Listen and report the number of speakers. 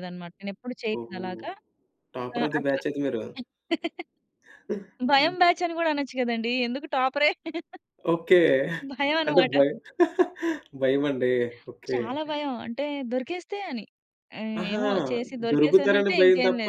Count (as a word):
two